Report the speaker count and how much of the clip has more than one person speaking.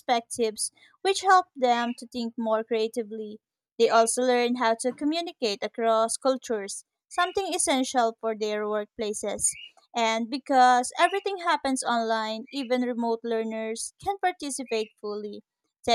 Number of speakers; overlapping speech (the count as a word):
one, no overlap